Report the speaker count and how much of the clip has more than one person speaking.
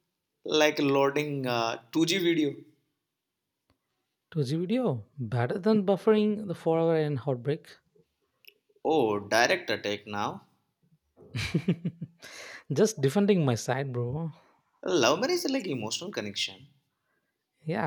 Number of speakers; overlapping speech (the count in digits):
2, no overlap